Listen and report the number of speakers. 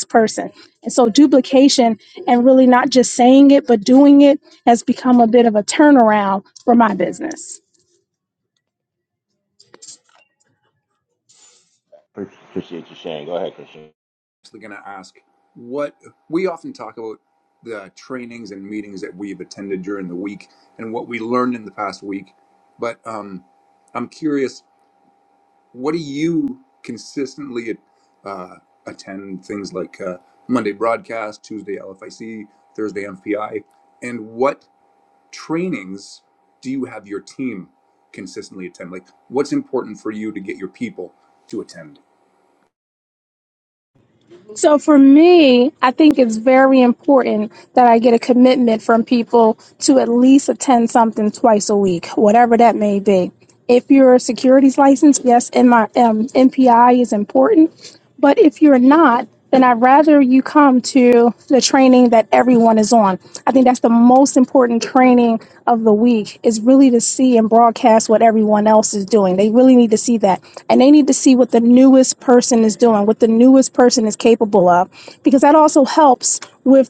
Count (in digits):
3